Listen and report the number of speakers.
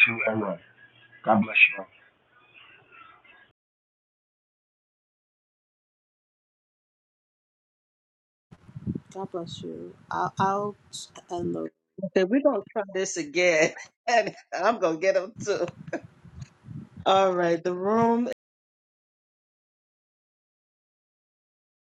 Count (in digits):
3